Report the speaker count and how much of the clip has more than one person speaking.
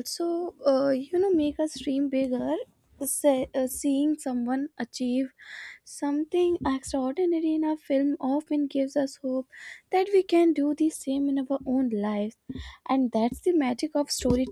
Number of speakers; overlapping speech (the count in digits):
1, no overlap